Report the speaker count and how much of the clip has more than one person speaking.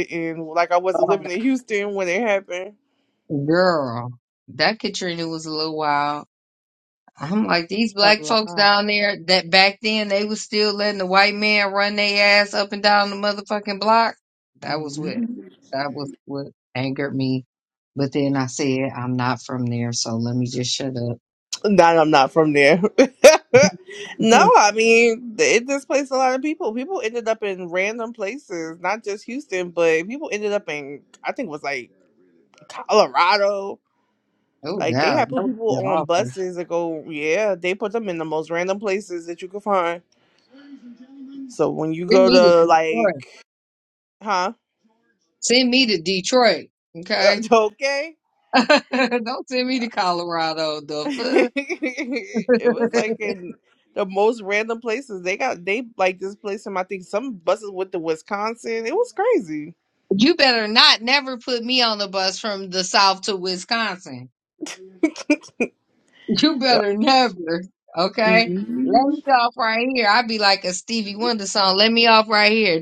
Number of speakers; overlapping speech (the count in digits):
2, about 9%